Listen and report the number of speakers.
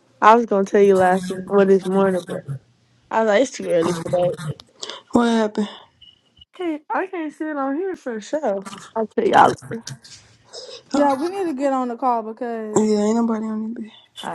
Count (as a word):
three